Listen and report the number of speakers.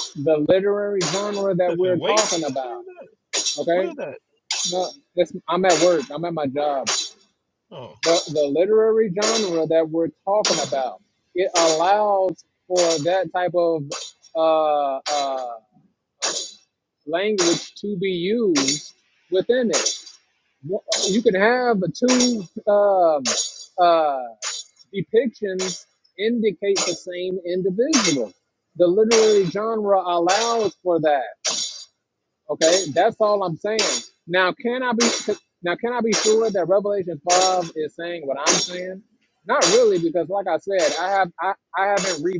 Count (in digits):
2